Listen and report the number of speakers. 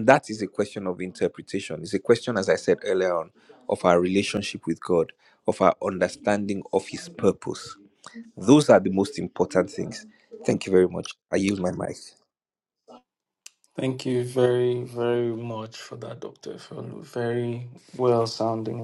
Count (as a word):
two